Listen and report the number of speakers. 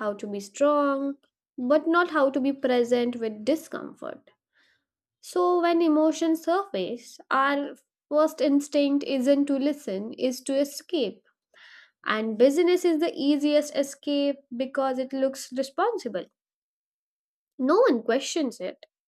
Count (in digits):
1